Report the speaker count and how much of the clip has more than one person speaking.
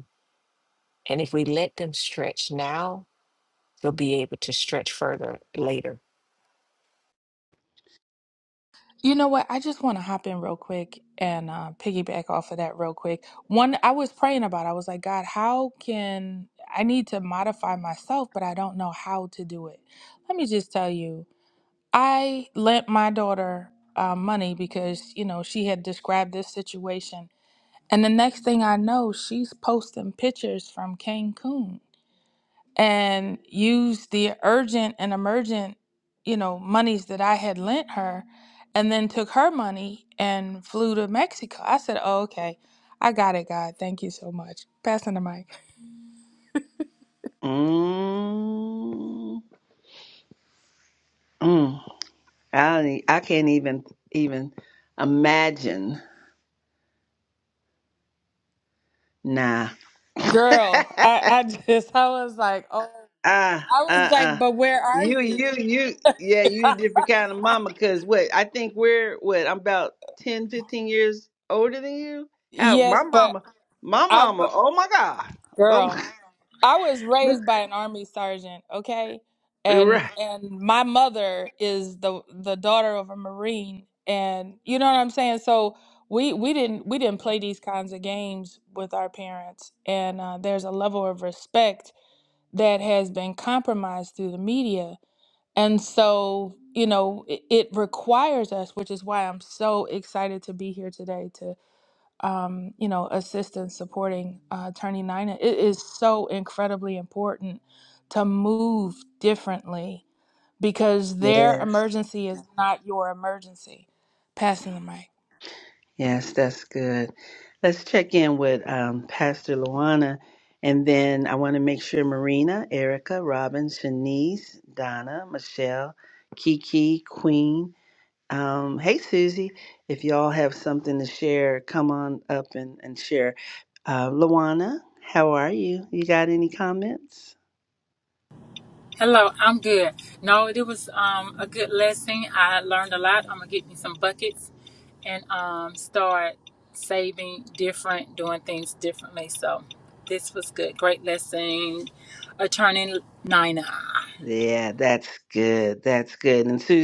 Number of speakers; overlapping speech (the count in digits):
4, about 2%